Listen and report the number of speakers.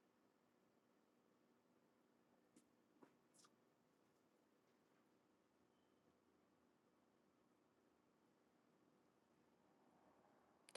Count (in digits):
0